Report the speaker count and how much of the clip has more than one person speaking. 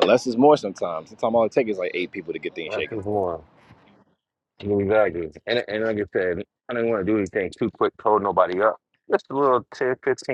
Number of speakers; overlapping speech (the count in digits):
2, about 3%